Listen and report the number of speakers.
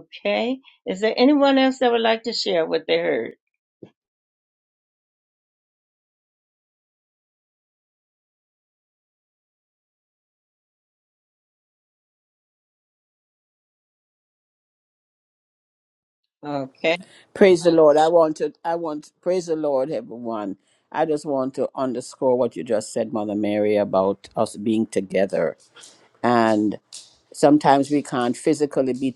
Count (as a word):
two